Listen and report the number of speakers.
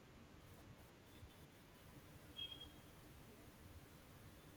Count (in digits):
0